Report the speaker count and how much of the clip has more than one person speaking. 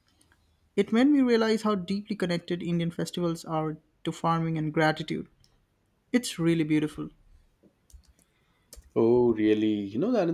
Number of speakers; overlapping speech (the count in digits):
2, no overlap